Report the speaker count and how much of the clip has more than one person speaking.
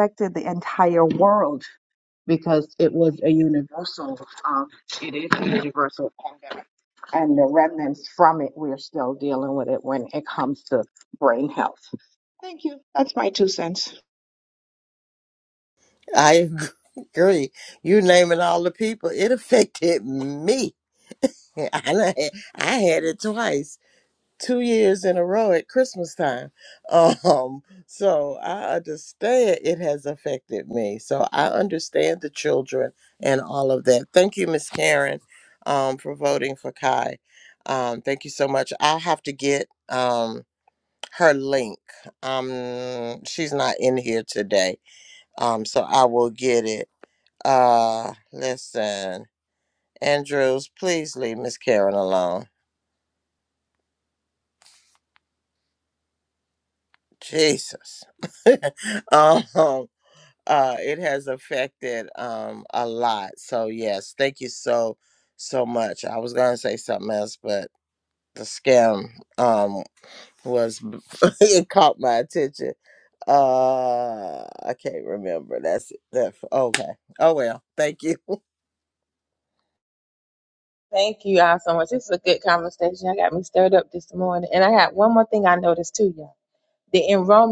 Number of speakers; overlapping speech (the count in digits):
3, no overlap